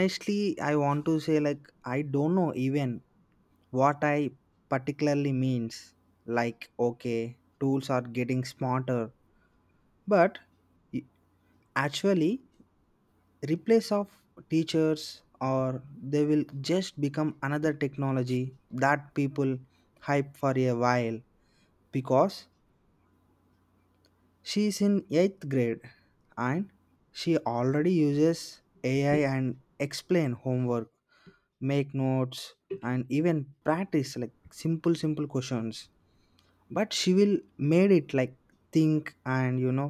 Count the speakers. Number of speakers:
1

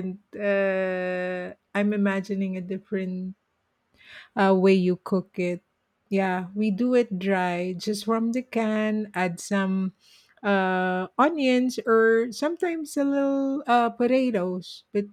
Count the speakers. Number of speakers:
1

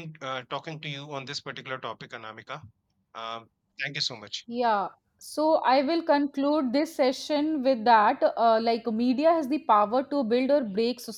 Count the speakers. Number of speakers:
2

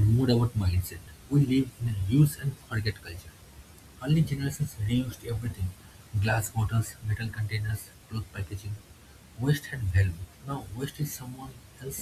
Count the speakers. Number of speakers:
1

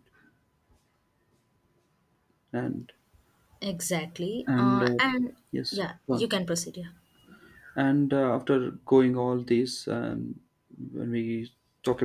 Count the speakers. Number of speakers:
2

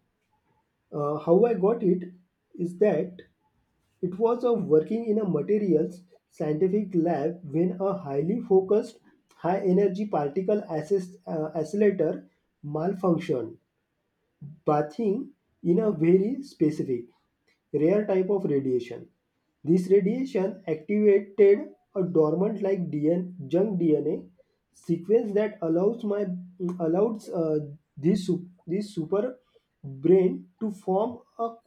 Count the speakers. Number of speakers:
1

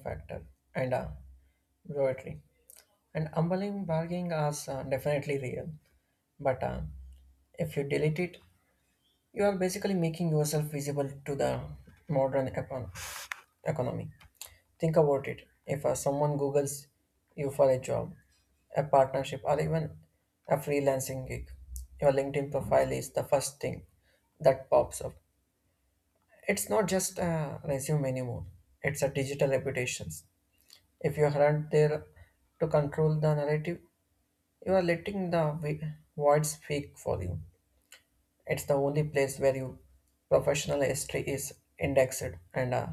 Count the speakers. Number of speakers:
1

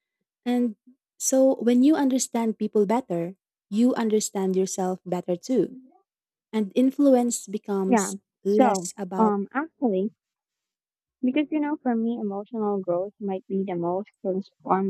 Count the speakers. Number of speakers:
2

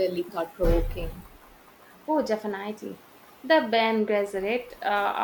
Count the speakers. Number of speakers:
2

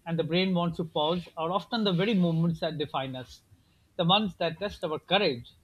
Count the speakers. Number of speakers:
1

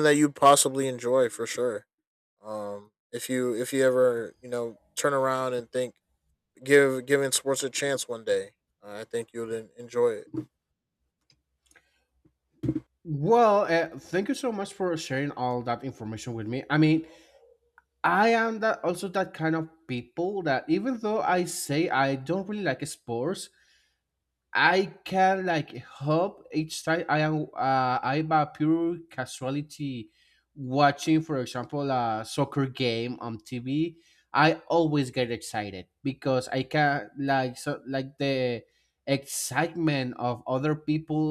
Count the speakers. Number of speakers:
2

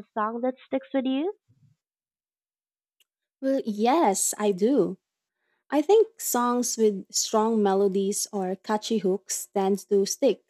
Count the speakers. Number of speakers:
2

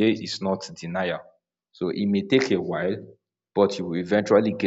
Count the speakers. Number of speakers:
1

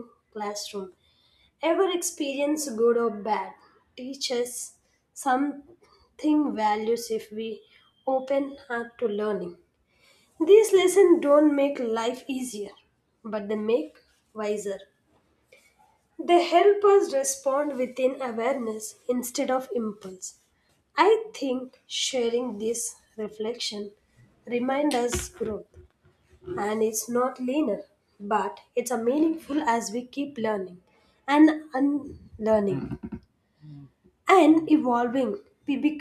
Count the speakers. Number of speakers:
1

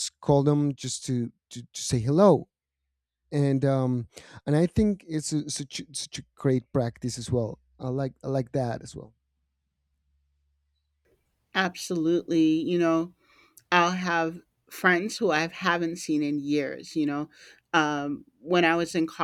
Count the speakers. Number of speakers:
2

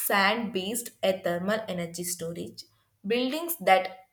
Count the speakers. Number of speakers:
1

